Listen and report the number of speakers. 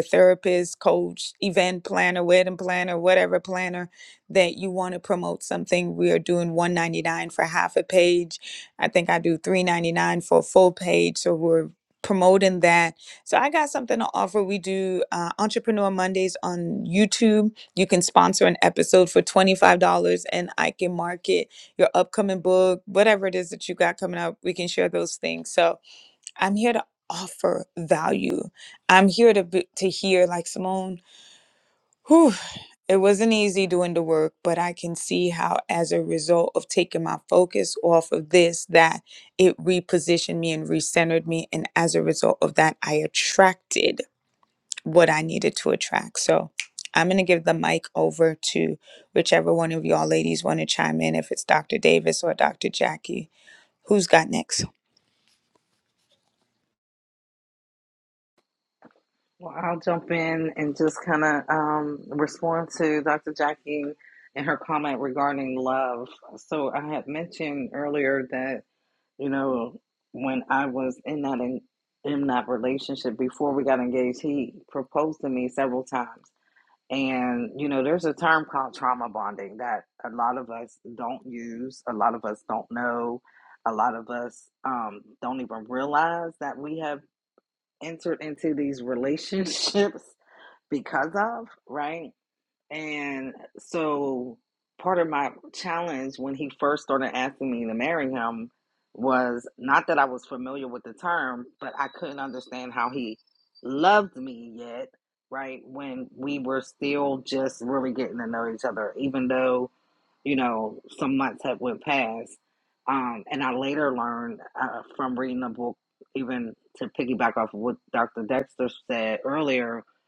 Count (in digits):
2